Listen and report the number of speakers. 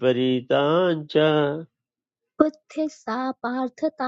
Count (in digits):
2